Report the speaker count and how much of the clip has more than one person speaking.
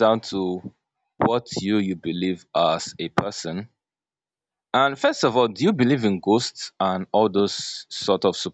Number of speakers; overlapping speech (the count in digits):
1, no overlap